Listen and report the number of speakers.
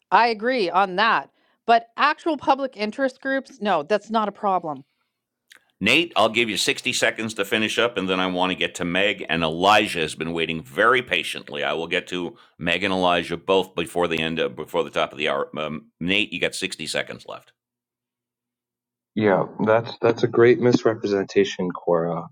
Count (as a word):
three